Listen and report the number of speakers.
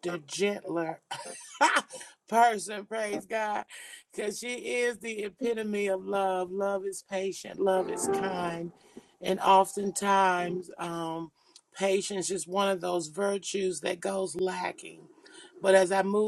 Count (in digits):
1